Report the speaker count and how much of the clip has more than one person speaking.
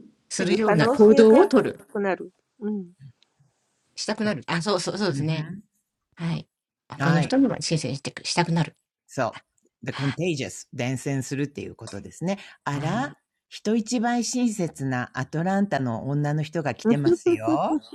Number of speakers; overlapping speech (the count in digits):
3, about 13%